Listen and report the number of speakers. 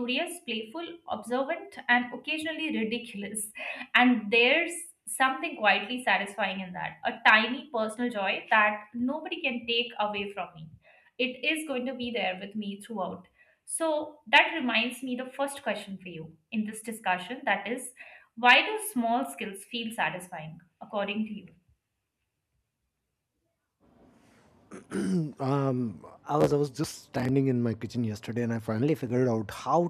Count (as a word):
two